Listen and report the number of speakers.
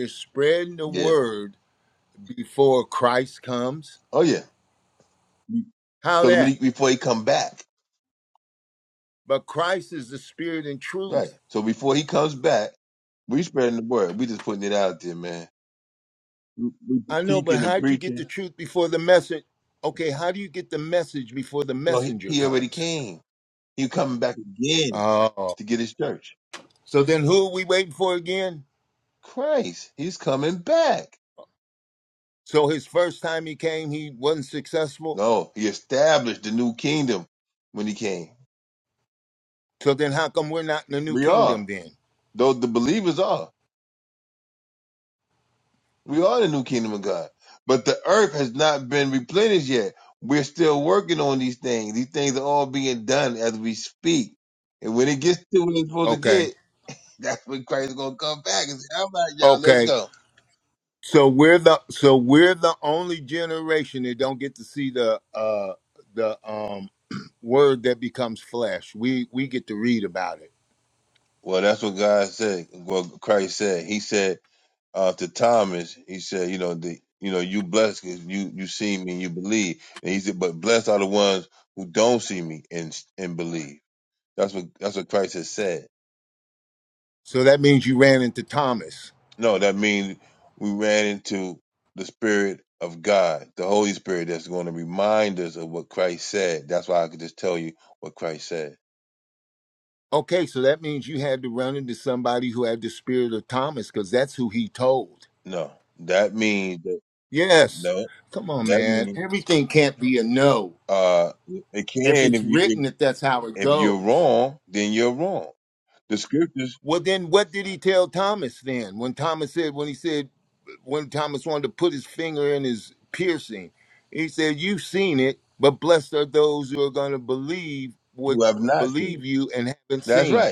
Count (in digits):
2